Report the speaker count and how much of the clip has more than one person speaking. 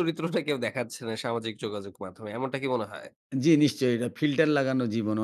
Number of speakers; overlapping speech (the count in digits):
2, no overlap